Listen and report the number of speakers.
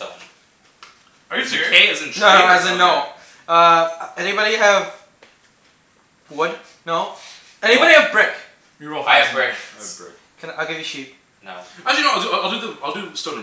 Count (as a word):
four